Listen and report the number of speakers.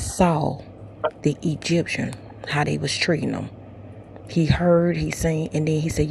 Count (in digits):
1